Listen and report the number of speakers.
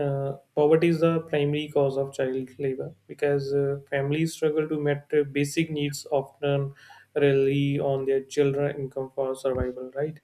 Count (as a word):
one